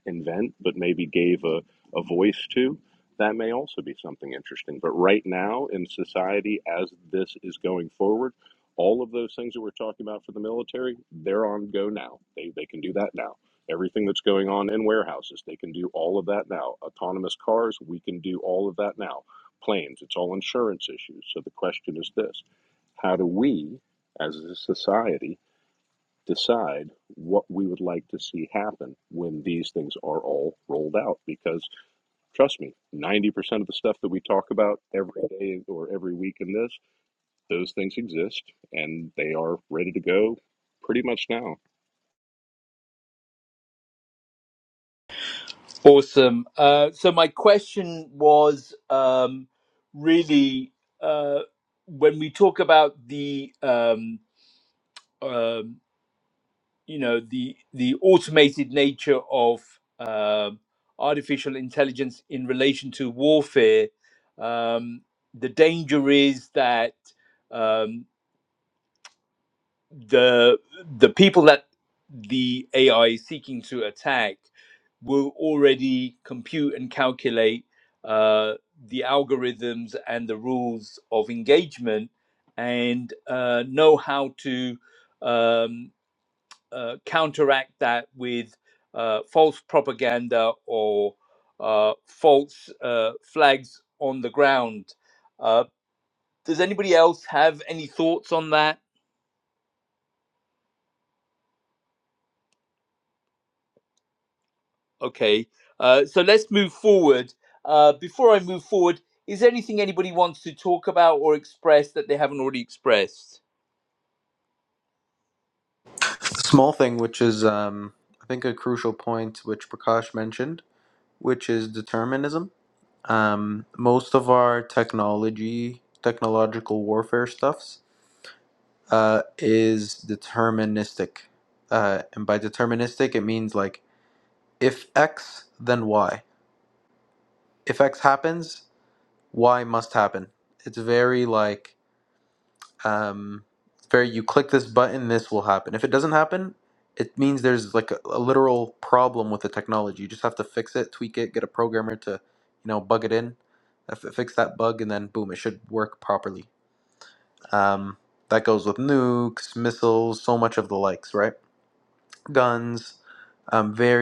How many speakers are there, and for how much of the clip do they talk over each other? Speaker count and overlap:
3, no overlap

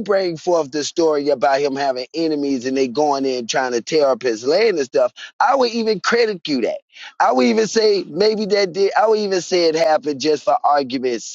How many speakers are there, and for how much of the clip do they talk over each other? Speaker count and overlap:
1, no overlap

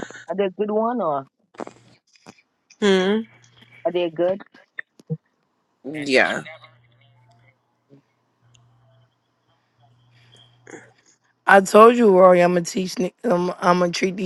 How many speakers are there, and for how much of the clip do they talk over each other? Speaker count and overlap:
3, no overlap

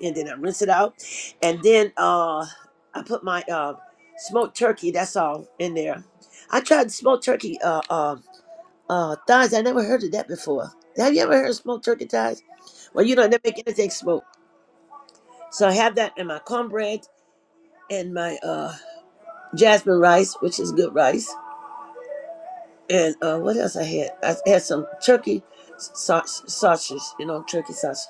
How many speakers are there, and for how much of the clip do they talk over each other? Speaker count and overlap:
1, no overlap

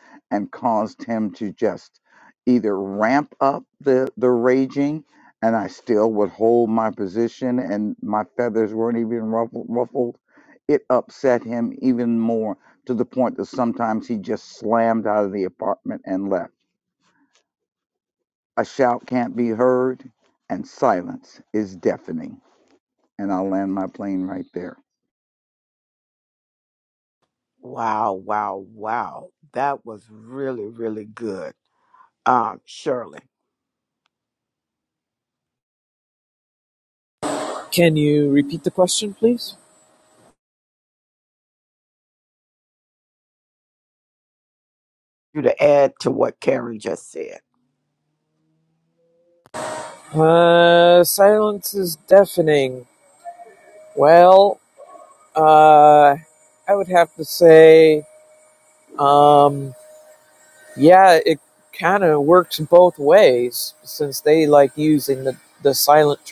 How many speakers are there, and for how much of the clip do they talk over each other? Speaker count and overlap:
3, no overlap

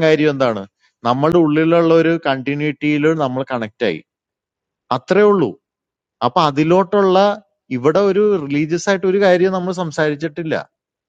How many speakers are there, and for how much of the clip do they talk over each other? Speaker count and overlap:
1, no overlap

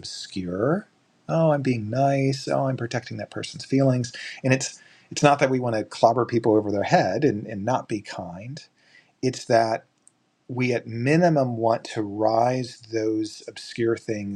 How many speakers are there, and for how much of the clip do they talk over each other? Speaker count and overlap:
1, no overlap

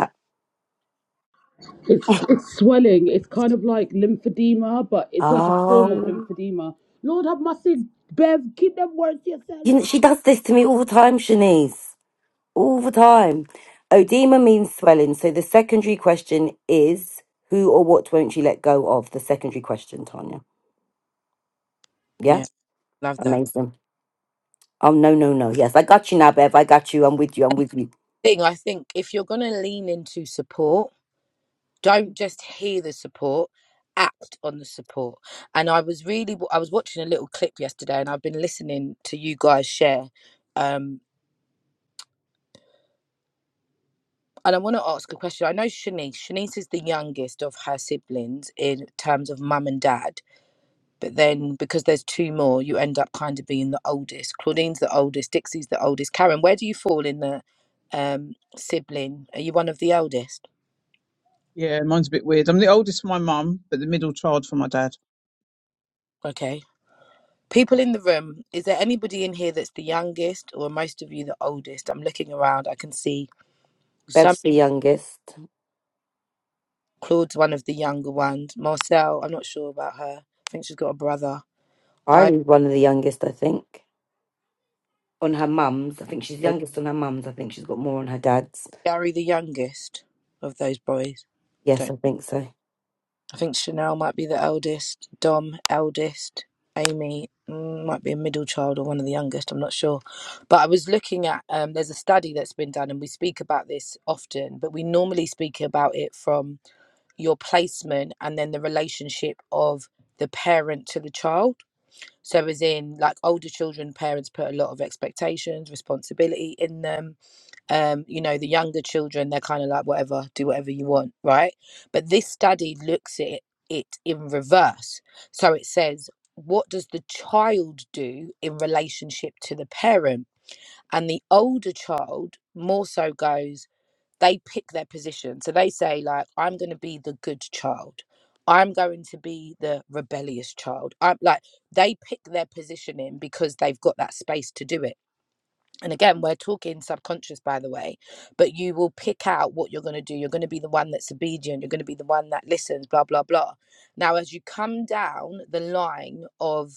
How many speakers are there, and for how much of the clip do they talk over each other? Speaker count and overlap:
4, about 1%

